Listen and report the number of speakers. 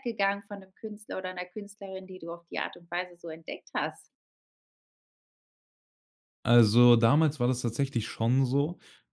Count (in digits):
2